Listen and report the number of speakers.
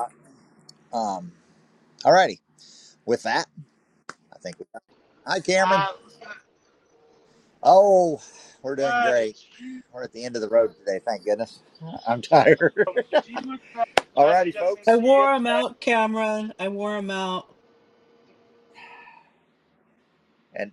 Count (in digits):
3